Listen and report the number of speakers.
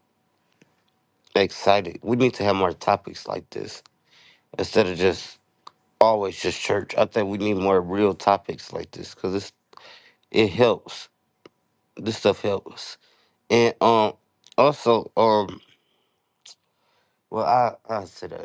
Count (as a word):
one